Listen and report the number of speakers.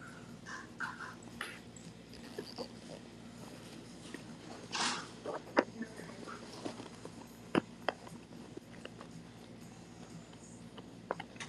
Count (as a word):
zero